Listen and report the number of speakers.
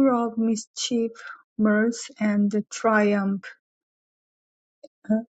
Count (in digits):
1